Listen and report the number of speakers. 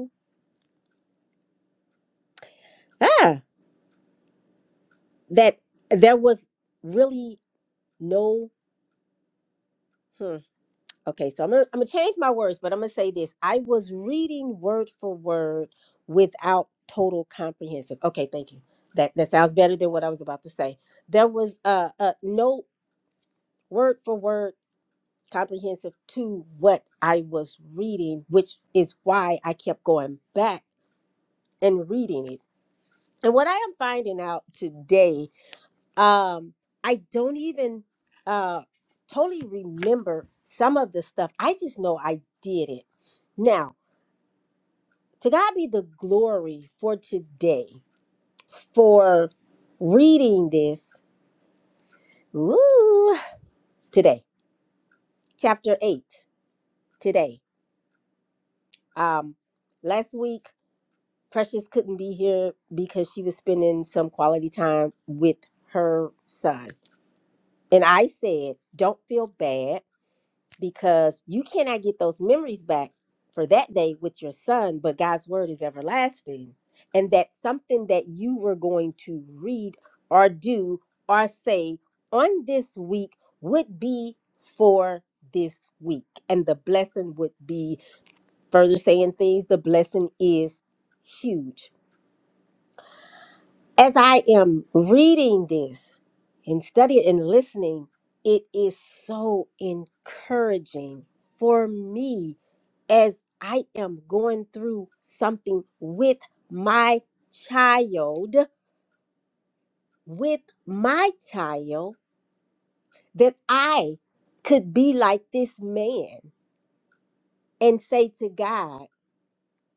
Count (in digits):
1